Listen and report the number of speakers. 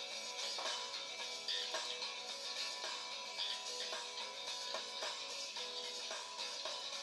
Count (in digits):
0